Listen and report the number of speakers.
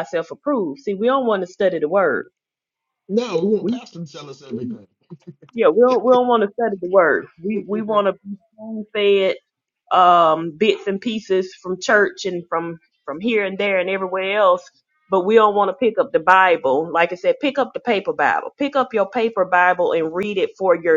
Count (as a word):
two